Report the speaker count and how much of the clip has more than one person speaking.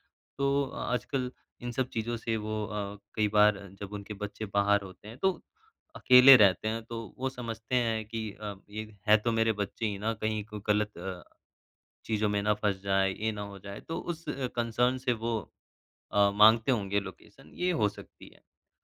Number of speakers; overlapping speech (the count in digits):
1, no overlap